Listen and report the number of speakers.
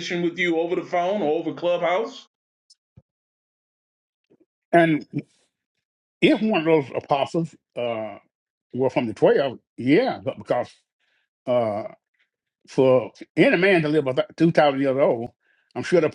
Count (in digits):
2